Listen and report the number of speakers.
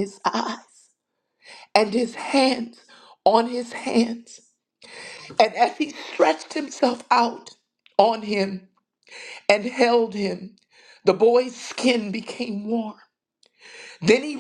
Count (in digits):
1